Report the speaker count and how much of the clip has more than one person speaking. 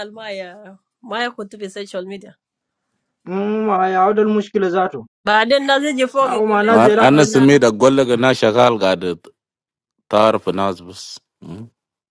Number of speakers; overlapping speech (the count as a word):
three, about 11%